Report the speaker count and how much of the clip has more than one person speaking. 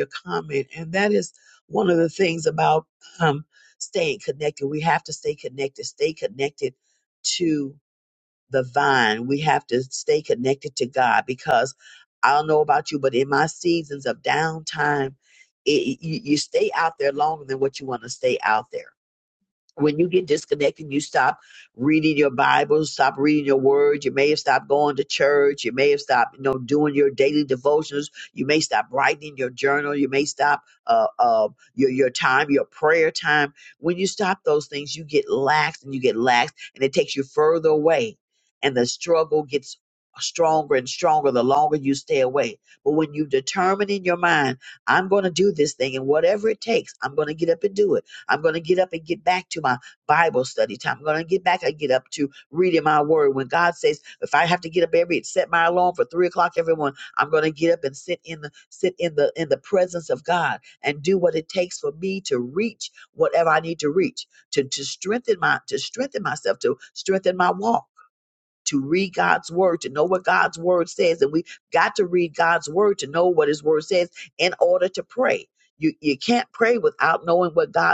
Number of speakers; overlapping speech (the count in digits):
1, no overlap